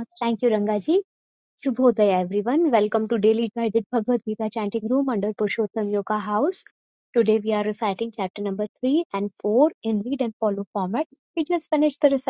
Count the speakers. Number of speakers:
one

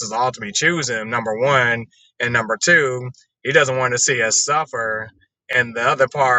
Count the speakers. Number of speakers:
one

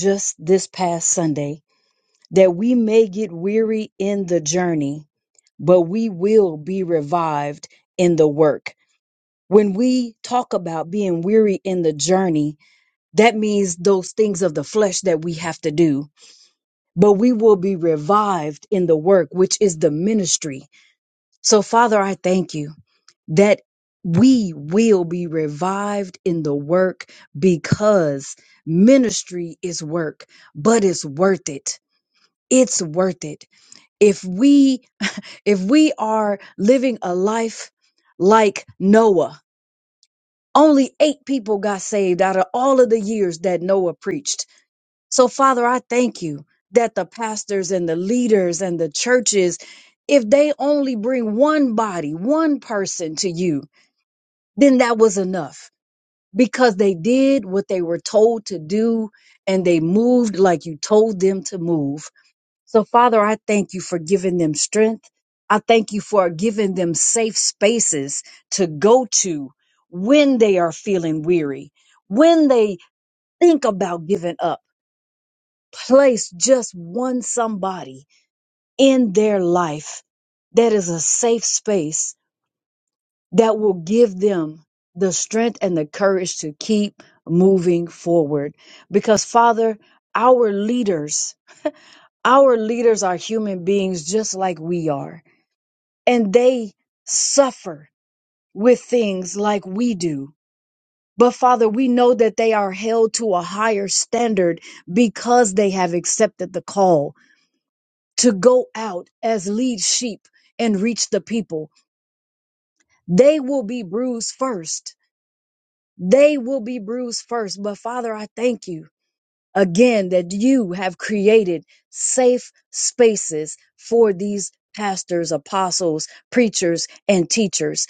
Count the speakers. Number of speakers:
one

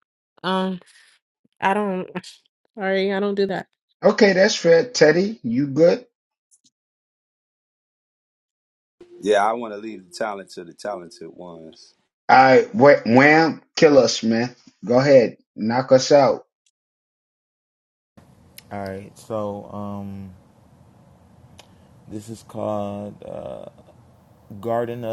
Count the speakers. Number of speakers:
four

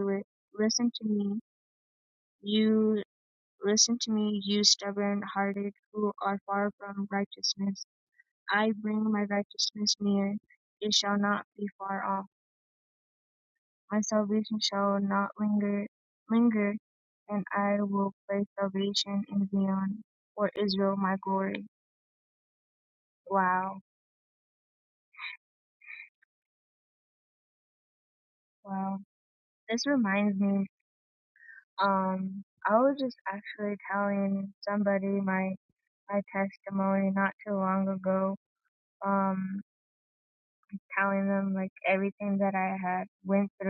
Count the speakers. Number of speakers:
one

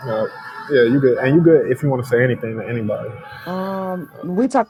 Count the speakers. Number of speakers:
two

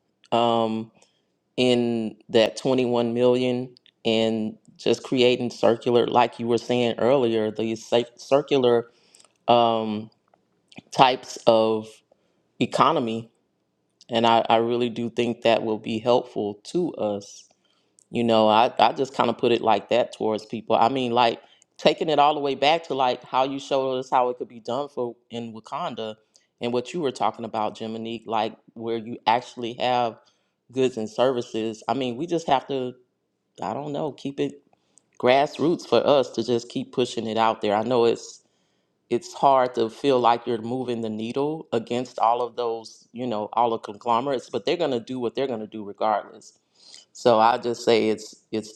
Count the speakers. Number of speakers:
one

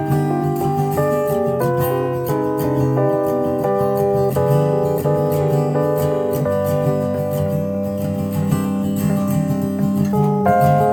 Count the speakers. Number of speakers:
zero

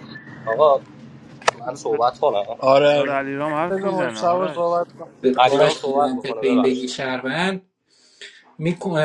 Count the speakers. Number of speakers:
four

